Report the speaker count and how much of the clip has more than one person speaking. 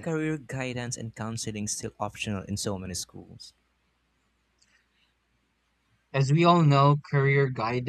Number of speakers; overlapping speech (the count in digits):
2, about 1%